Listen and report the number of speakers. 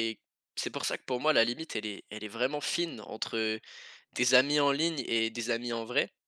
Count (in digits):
1